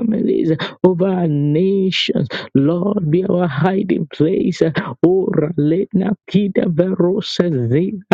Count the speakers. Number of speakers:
1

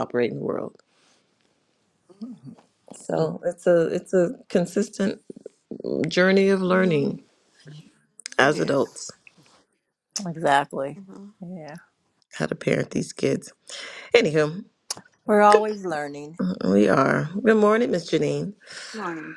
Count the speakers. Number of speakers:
3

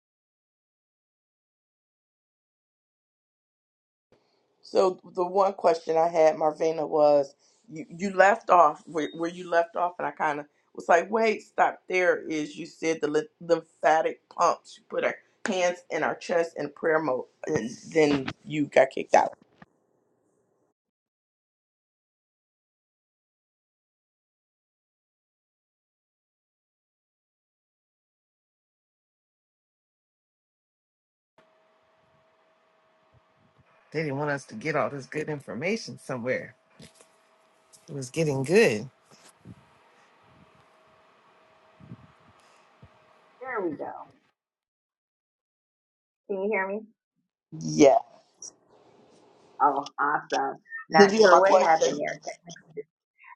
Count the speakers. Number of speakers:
3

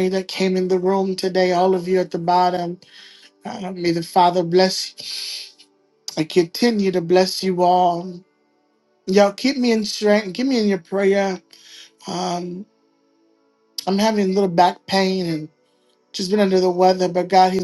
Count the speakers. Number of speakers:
1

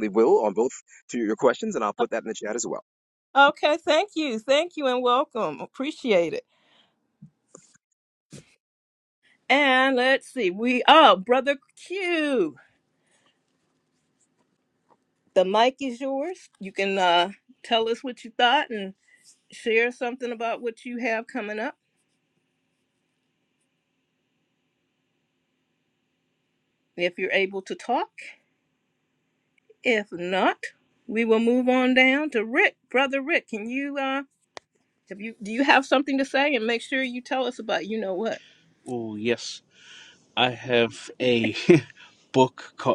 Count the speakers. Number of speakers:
3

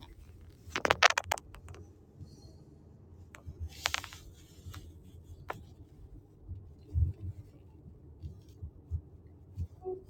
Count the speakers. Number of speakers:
0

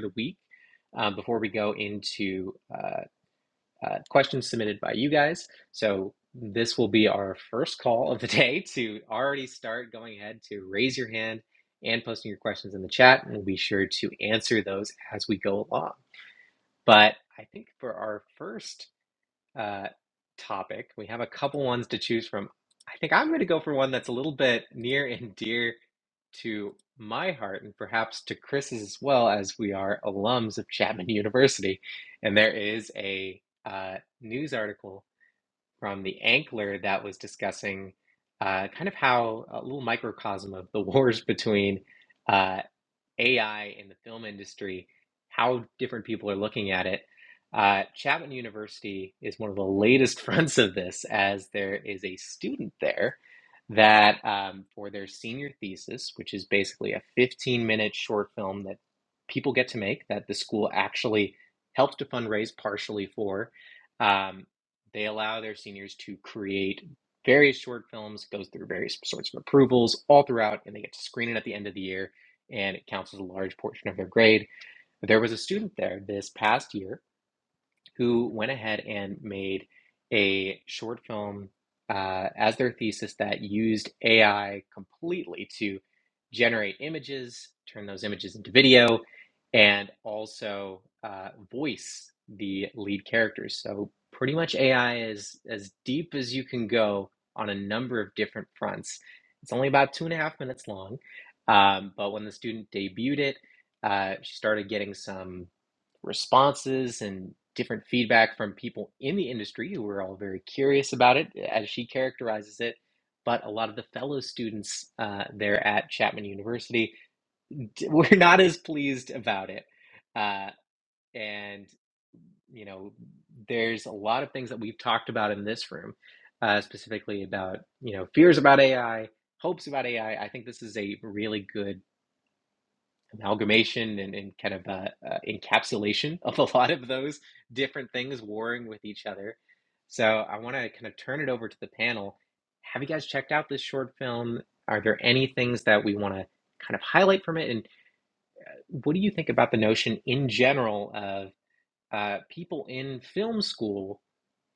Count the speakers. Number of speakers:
1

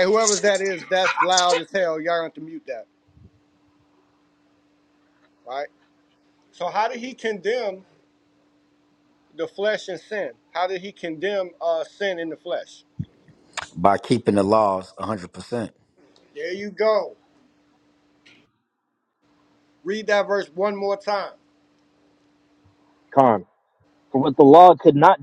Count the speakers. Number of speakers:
3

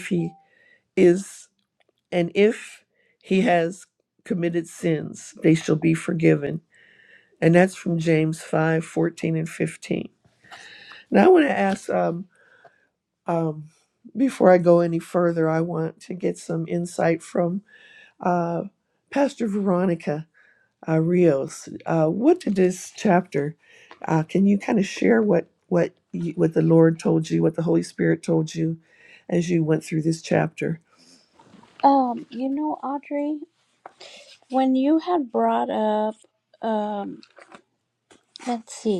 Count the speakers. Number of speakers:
2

